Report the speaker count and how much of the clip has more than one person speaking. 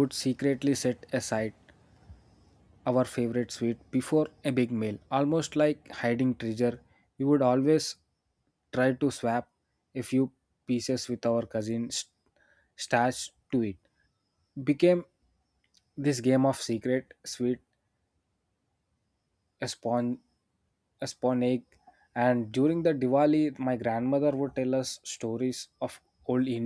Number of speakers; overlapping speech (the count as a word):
one, no overlap